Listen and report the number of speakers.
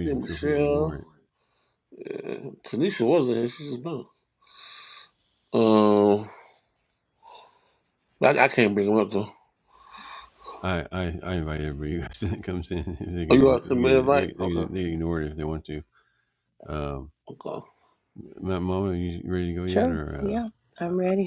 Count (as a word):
three